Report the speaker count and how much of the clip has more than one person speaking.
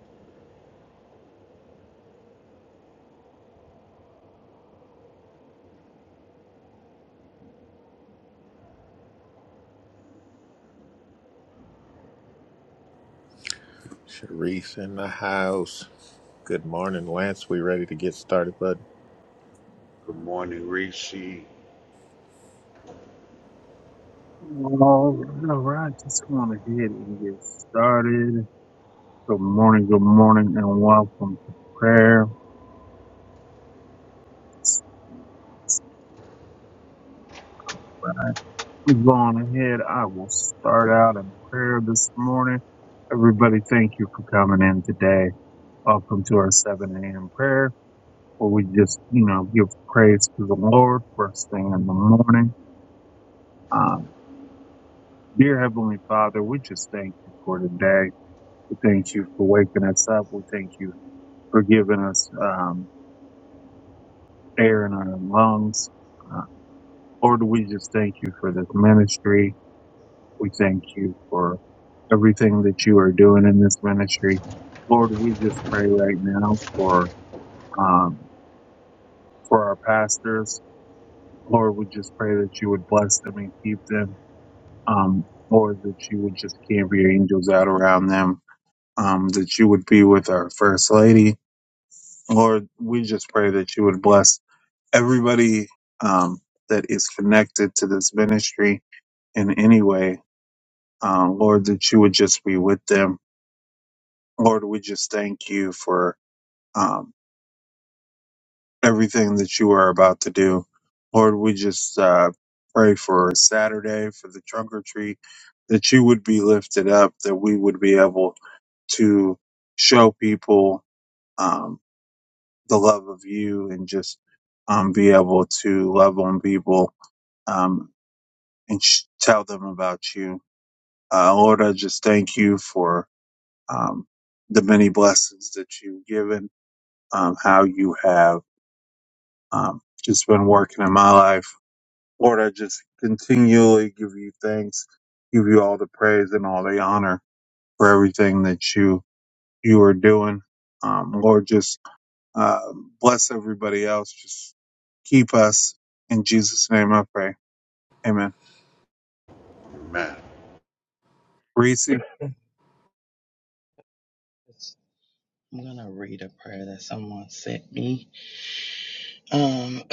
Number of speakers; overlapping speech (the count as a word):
four, no overlap